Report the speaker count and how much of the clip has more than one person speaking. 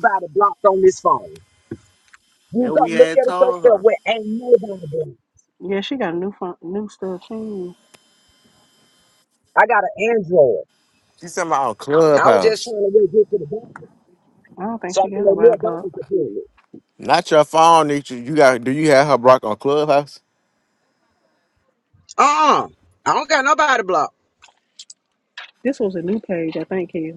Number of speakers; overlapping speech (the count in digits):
3, about 10%